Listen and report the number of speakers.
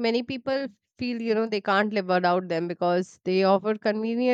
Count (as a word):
one